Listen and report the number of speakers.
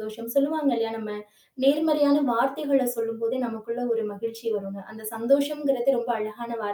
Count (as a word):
one